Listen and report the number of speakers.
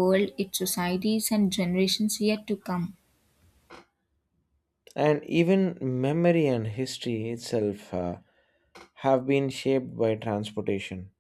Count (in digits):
2